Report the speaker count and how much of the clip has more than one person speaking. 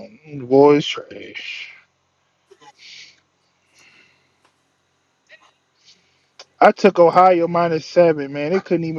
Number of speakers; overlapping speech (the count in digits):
1, no overlap